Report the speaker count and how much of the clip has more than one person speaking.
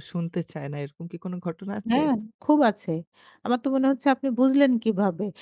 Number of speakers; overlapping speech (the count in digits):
2, about 3%